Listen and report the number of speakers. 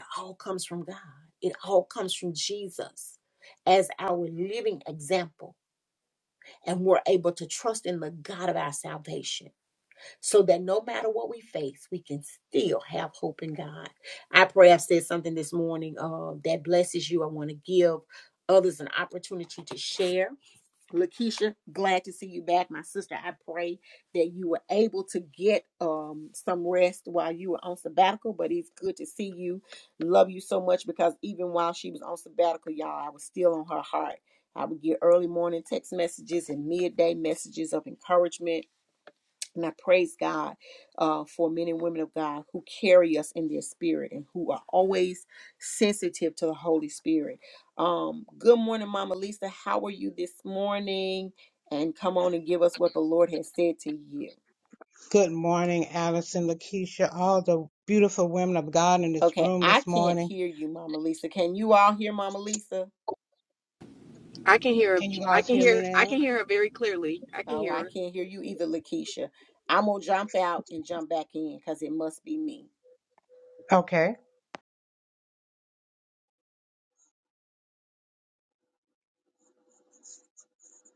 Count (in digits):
3